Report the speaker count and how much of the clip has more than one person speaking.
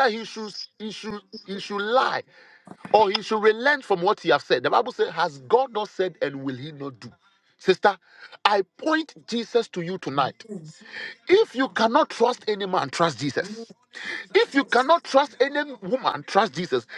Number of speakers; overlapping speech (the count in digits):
1, no overlap